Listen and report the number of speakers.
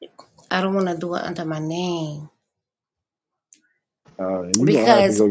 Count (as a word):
two